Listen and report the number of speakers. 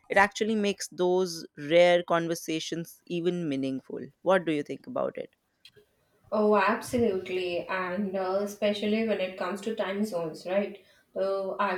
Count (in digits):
2